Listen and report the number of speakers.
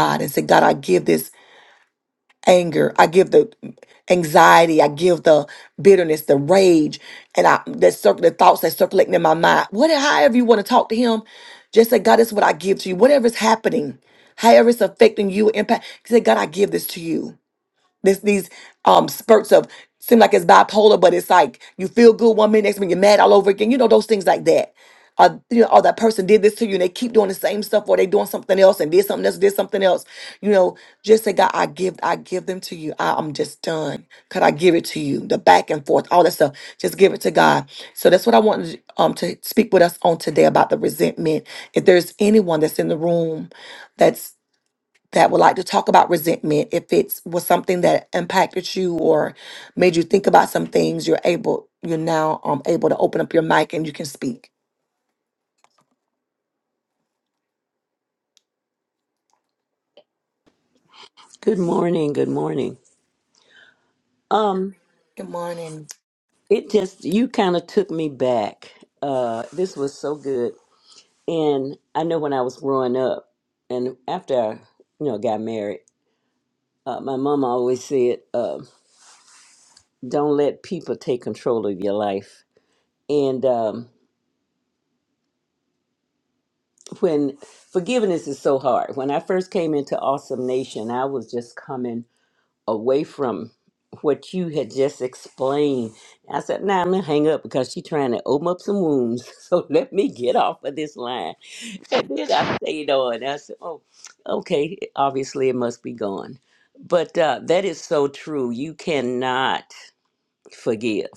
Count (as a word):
two